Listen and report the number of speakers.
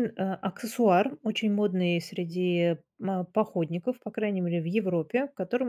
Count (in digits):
1